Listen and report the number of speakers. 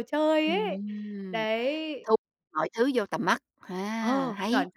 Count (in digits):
2